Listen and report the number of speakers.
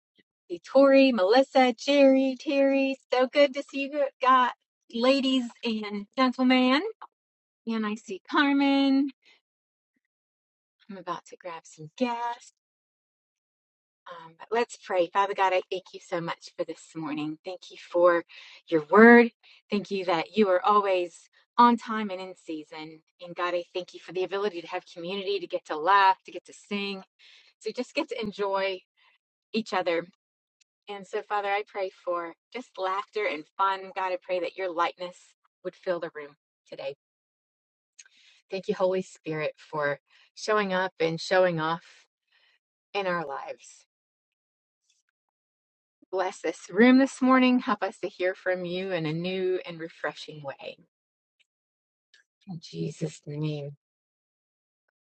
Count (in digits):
1